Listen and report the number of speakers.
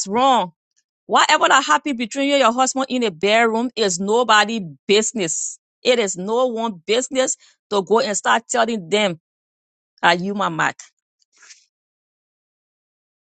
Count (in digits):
1